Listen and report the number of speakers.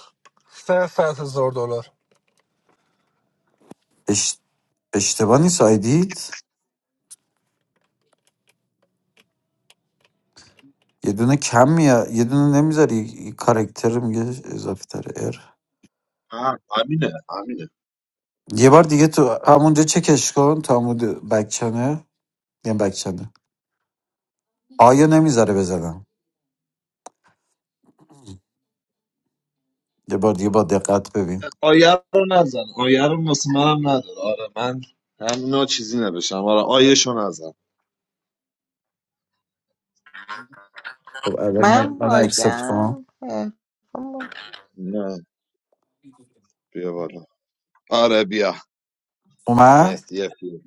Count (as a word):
four